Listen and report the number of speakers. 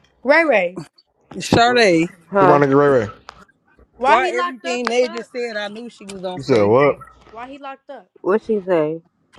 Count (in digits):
4